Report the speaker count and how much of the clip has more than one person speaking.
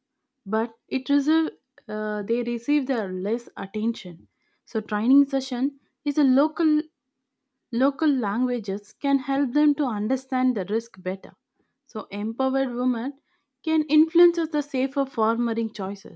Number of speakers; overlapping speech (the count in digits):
1, no overlap